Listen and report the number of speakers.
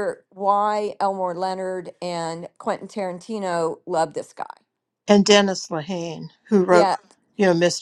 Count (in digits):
2